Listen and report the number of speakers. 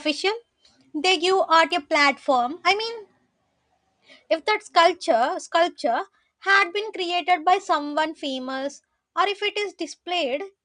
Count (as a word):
one